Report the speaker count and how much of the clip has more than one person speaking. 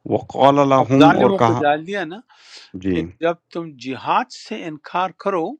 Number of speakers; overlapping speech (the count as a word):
two, about 19%